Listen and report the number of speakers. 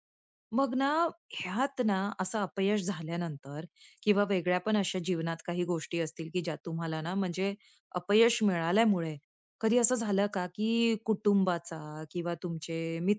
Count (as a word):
one